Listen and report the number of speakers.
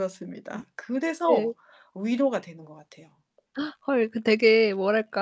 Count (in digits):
2